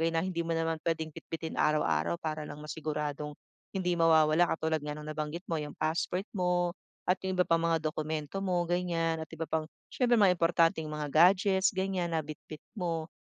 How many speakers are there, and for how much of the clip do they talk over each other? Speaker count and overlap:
one, no overlap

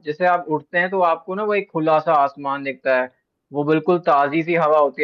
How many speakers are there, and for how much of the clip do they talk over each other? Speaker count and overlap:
one, no overlap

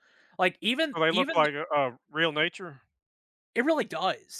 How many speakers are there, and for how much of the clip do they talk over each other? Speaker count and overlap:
two, about 13%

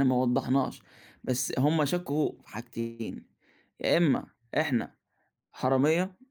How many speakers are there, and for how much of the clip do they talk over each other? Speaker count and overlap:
one, no overlap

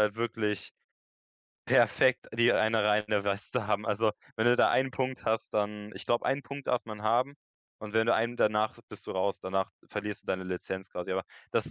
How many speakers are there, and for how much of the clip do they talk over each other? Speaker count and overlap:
one, no overlap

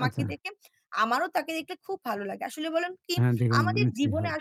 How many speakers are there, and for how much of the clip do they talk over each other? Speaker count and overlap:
two, about 25%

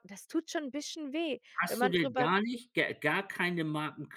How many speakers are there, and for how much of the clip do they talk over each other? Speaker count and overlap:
two, about 17%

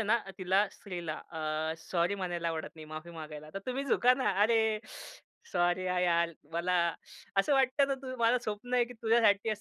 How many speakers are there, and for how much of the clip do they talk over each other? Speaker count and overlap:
one, no overlap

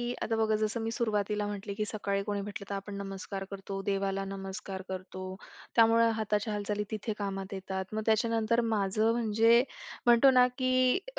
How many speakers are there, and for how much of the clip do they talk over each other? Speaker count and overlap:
one, no overlap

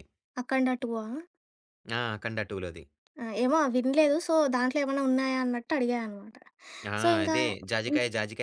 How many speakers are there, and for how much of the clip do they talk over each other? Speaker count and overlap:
two, about 7%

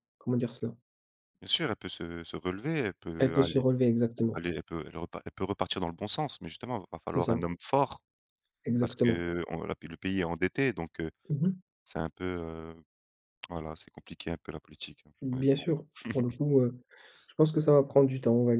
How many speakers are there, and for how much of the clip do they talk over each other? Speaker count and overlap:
two, about 8%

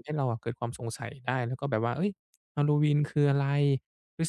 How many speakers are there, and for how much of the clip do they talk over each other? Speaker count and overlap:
one, no overlap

